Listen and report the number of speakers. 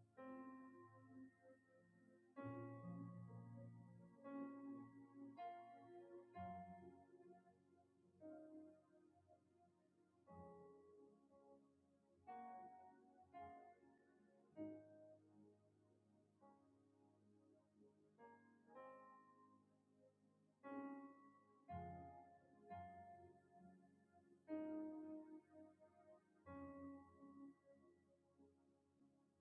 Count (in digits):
0